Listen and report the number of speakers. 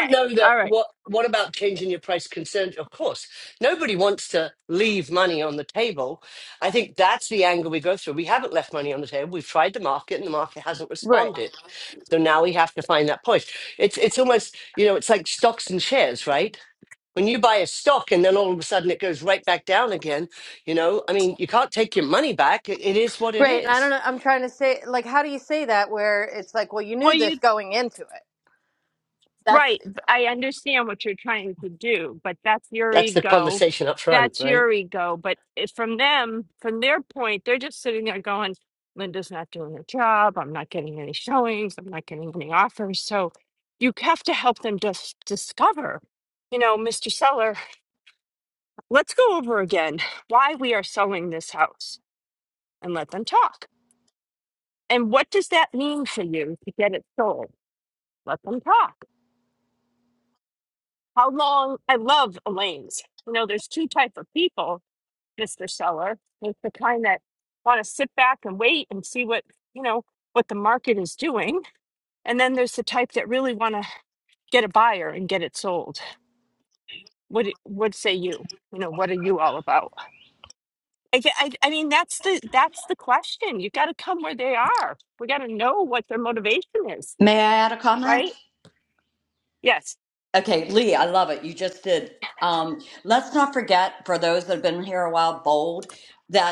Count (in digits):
4